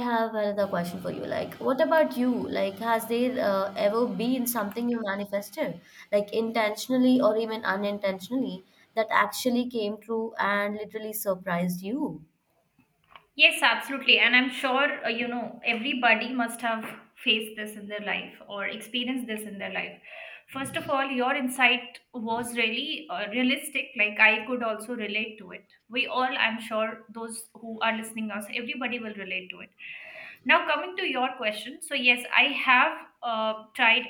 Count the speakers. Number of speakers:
2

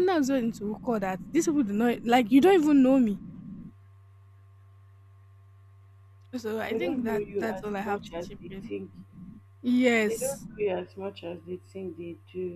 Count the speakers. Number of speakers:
2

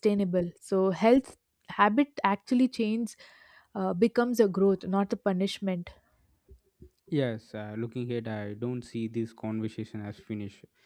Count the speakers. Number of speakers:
2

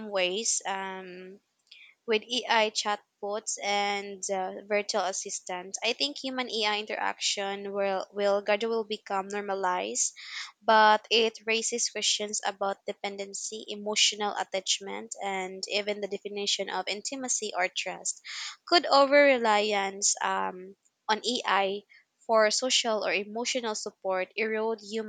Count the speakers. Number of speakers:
1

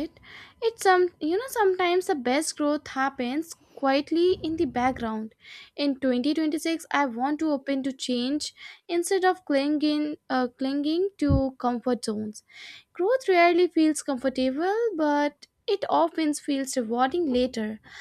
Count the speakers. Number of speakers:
1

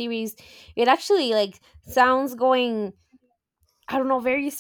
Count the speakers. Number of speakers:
1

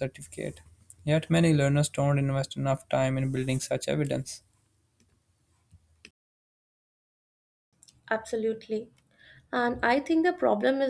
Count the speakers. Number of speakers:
2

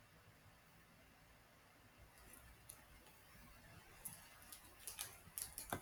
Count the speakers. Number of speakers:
0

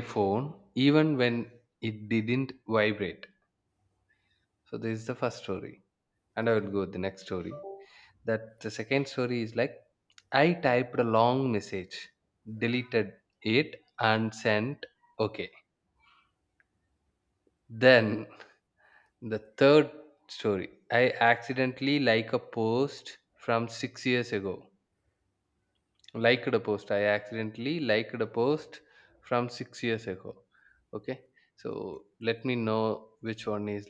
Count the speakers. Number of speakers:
1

